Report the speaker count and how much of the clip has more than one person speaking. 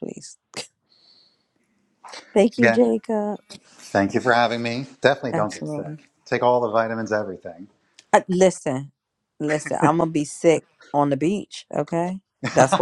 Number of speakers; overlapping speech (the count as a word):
two, about 7%